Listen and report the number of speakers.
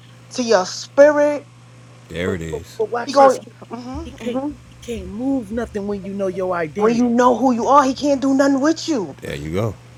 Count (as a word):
three